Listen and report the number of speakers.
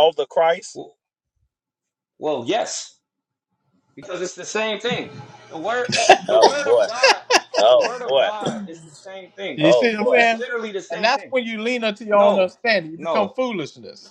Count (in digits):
3